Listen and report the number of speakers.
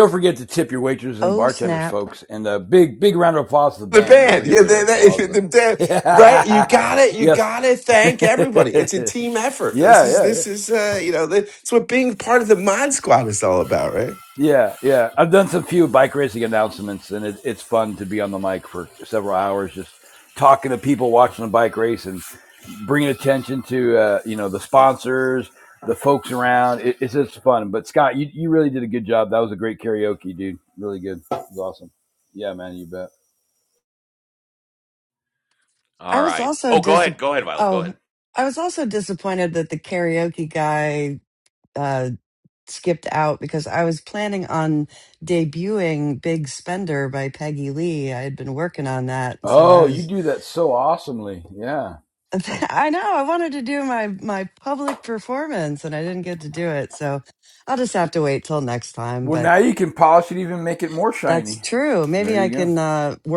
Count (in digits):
4